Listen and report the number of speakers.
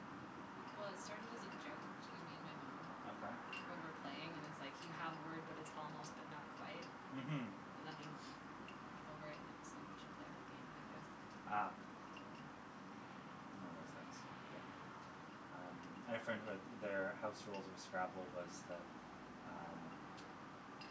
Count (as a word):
two